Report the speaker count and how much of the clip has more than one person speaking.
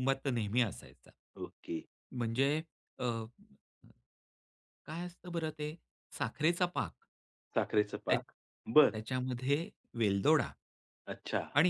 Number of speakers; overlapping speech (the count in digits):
2, about 1%